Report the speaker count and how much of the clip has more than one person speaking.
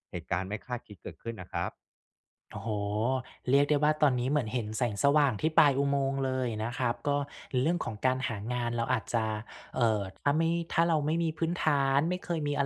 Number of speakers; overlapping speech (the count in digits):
2, no overlap